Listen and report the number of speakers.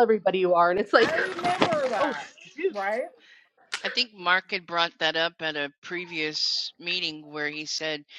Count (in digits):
3